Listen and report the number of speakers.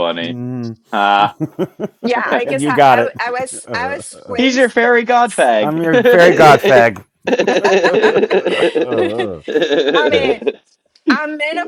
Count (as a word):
three